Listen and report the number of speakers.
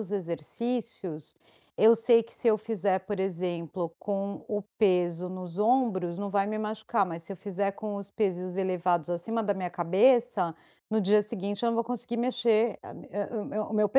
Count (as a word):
one